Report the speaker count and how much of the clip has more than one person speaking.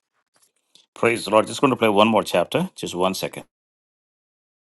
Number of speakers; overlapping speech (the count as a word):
one, no overlap